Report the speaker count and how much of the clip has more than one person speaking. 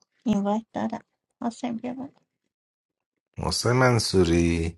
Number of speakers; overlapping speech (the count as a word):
two, no overlap